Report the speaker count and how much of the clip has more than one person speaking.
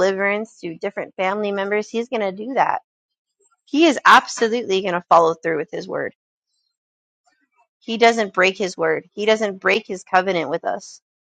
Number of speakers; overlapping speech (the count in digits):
1, no overlap